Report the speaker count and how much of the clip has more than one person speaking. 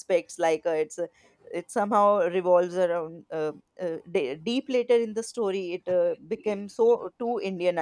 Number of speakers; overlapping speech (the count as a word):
one, no overlap